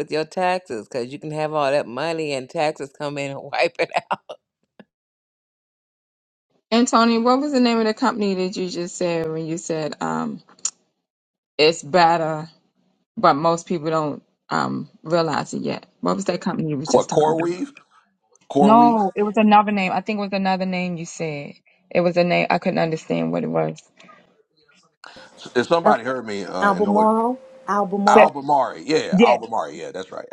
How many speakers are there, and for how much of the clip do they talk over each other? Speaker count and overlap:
4, about 7%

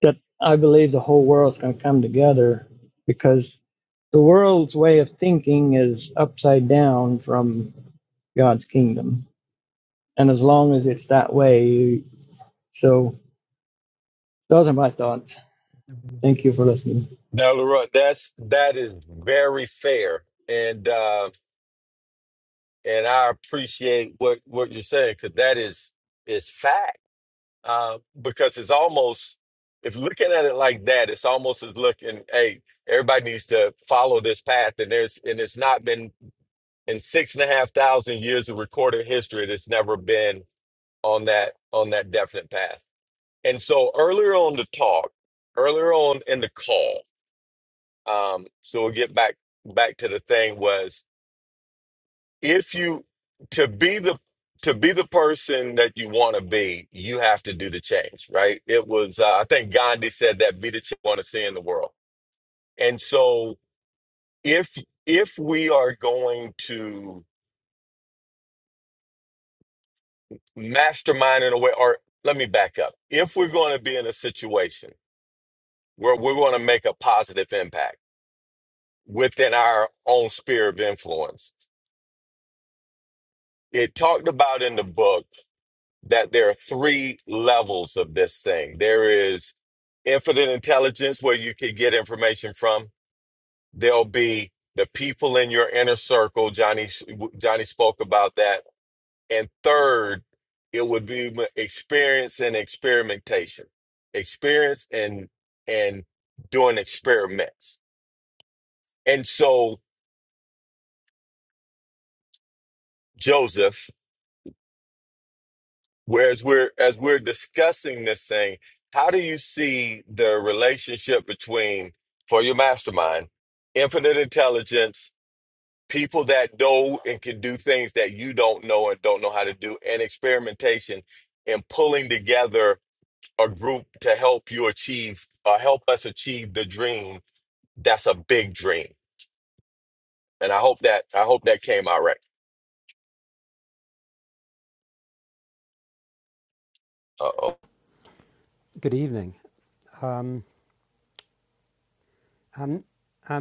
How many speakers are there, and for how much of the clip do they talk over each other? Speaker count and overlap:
3, no overlap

